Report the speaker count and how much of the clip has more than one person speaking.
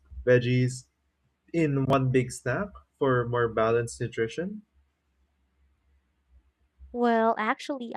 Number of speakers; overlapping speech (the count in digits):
2, no overlap